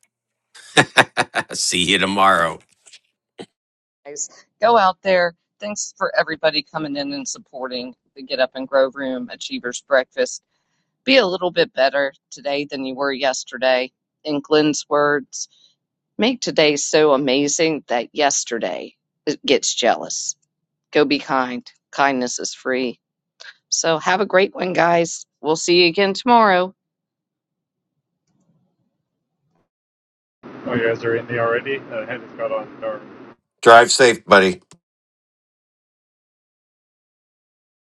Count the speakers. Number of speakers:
3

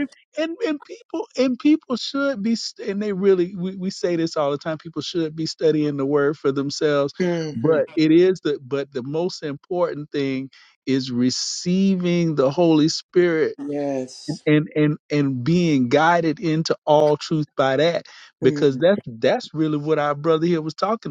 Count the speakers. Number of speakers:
2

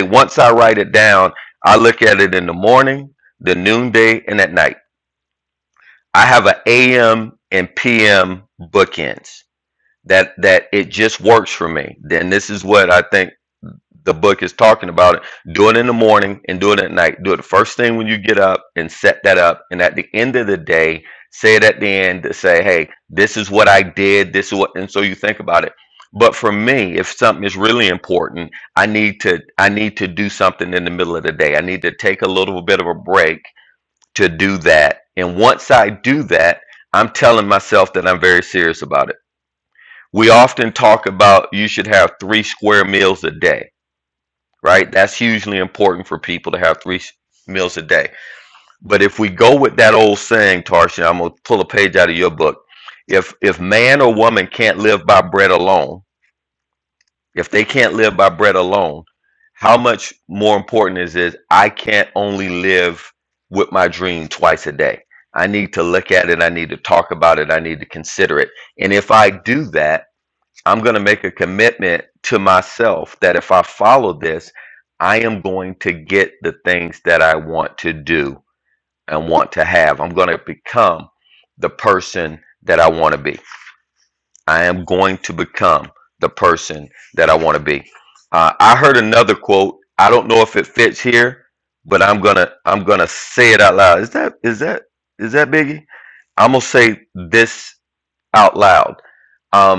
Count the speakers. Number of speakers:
1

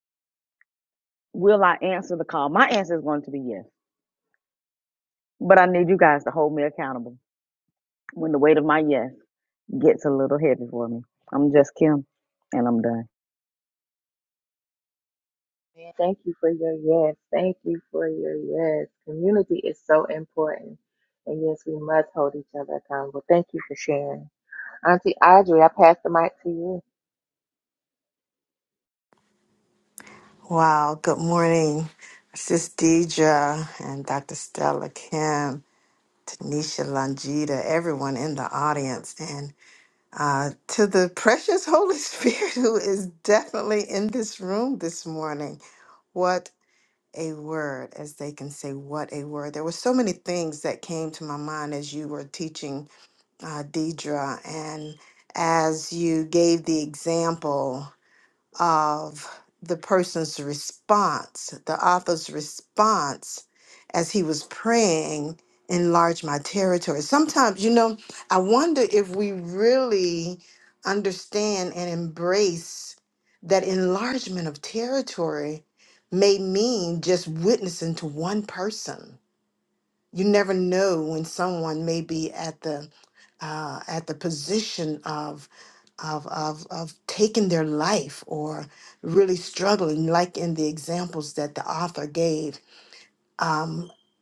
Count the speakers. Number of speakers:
3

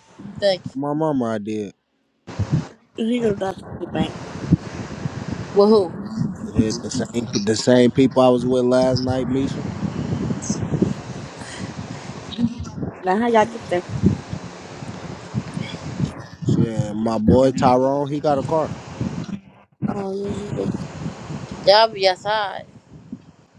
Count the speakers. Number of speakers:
3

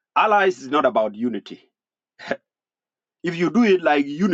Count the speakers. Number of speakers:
1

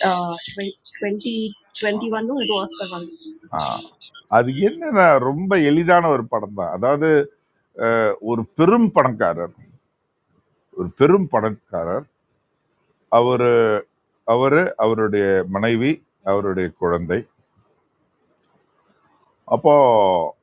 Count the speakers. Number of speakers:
2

